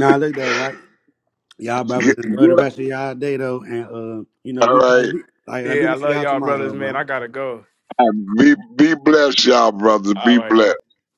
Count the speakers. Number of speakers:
3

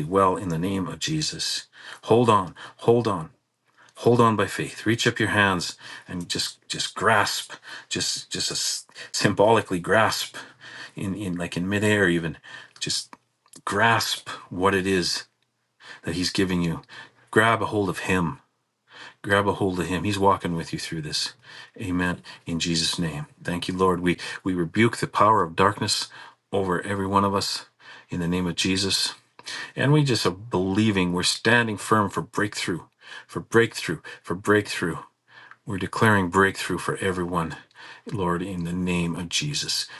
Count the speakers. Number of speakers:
1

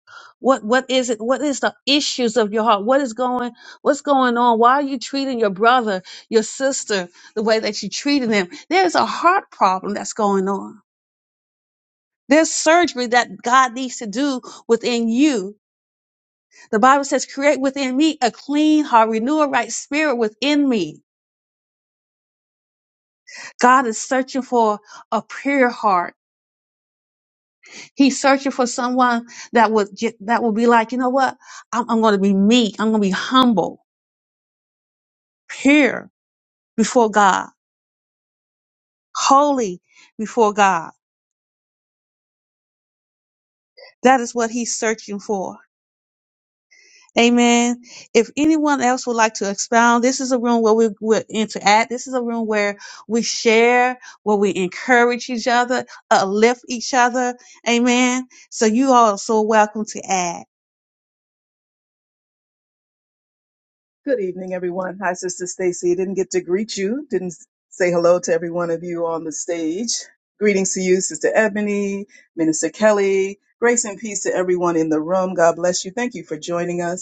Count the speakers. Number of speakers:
2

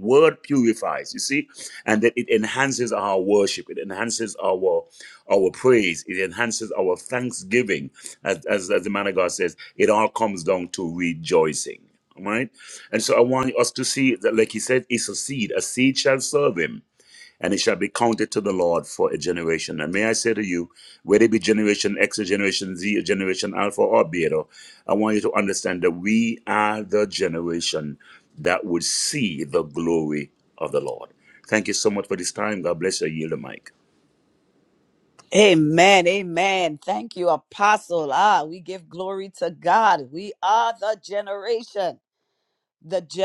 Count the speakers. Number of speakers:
2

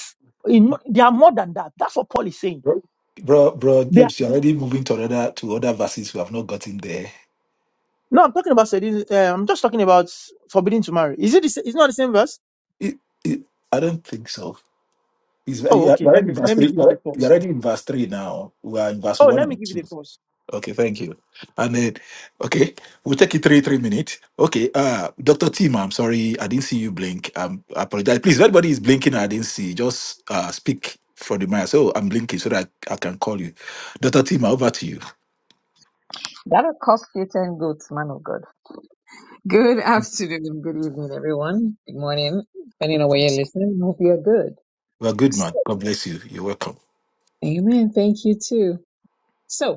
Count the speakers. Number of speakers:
3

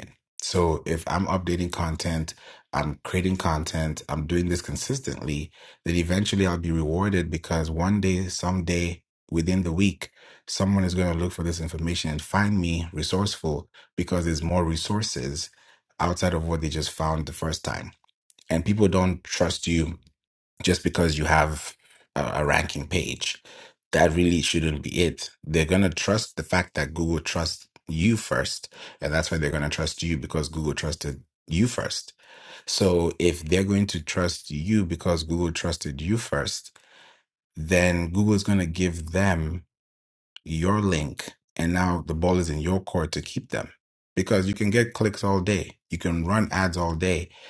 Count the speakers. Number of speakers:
1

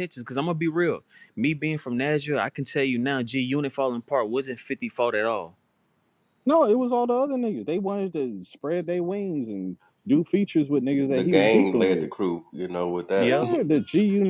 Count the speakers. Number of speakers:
3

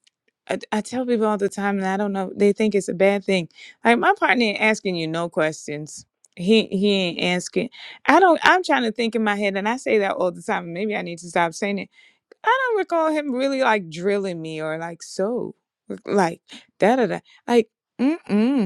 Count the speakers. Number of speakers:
1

